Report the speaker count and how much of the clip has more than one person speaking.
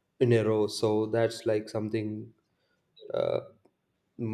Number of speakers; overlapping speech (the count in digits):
1, no overlap